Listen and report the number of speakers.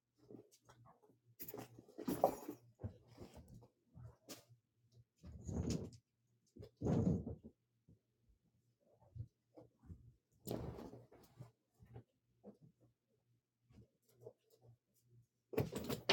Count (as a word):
zero